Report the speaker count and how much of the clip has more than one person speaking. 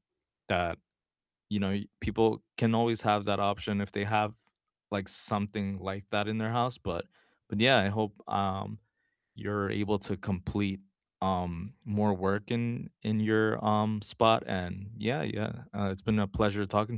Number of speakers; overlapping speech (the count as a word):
one, no overlap